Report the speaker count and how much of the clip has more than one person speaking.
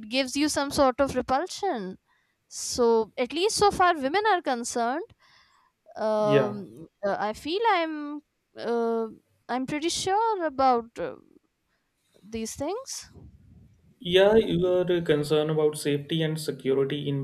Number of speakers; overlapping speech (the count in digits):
2, about 2%